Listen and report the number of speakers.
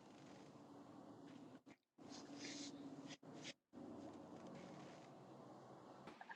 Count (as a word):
zero